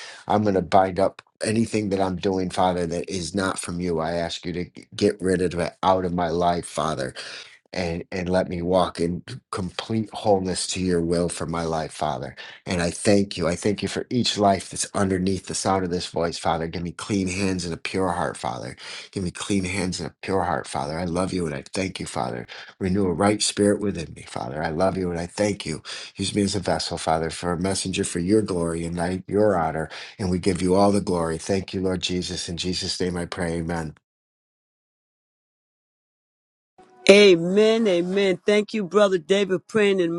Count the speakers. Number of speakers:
2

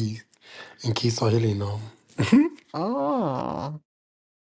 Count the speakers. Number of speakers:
2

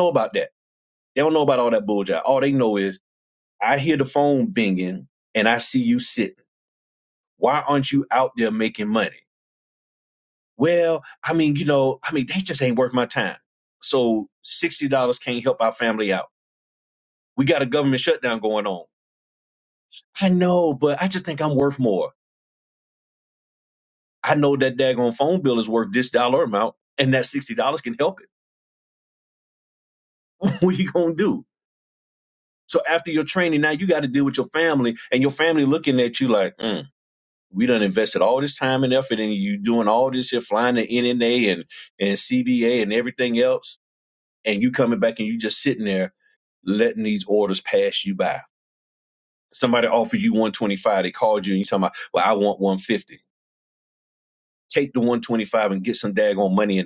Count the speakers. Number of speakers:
1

